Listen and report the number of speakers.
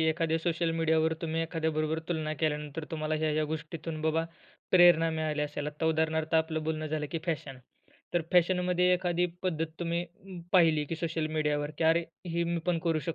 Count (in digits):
1